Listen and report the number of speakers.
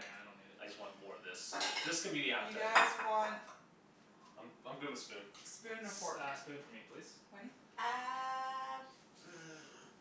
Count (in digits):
4